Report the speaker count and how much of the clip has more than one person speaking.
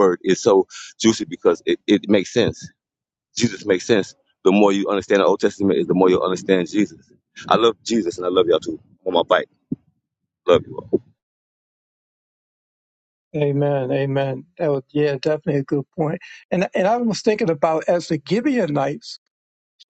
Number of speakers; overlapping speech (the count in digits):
2, no overlap